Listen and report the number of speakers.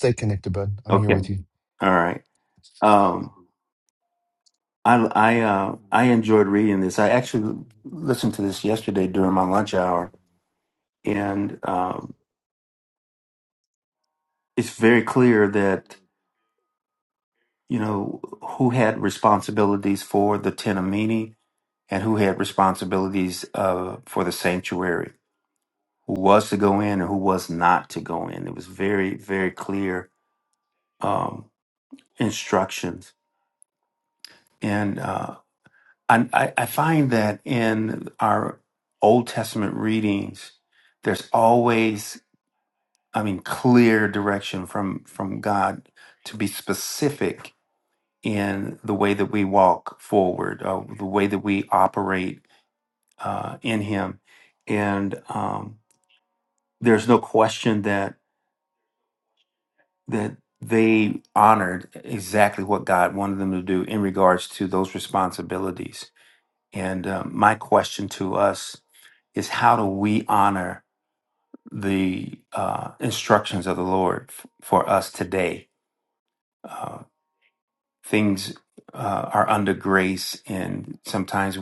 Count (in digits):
2